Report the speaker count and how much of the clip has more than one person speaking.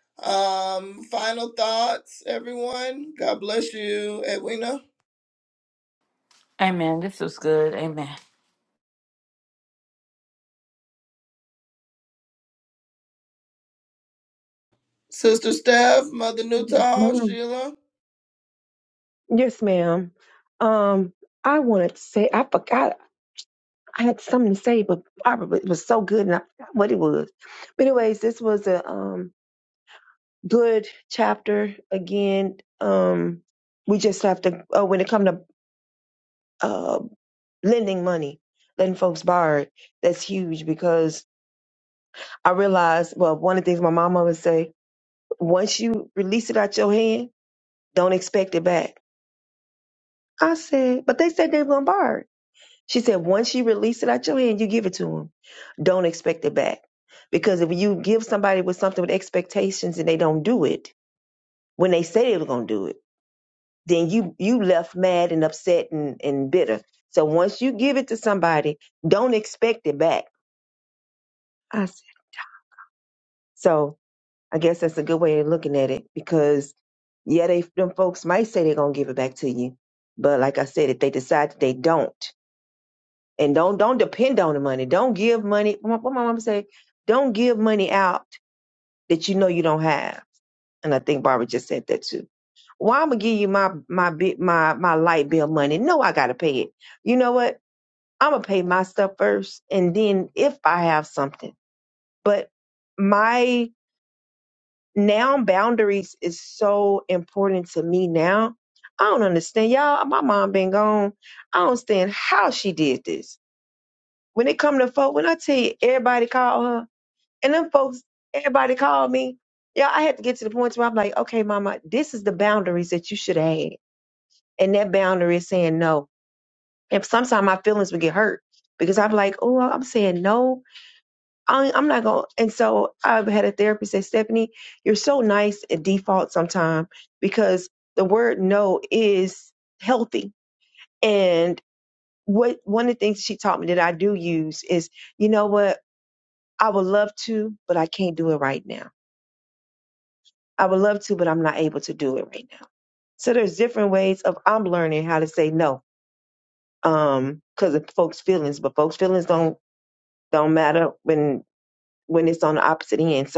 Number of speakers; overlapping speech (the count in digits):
3, under 1%